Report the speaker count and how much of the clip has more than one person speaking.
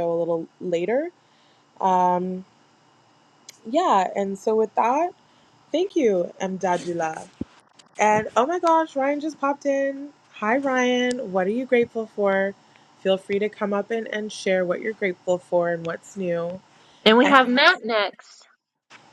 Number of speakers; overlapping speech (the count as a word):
two, about 1%